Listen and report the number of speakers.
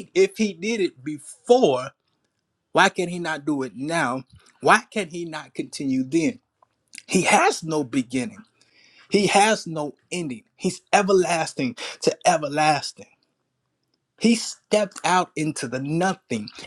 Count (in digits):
1